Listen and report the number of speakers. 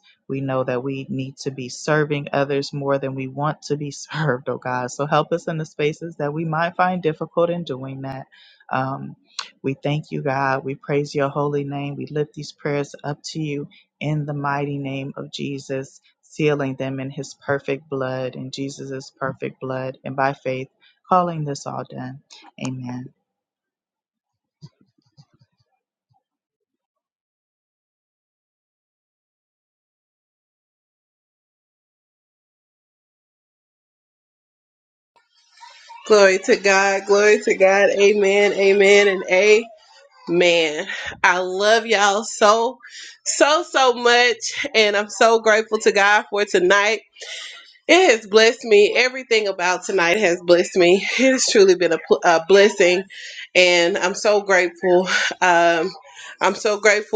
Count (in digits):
2